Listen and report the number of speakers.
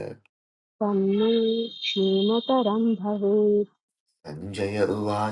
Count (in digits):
2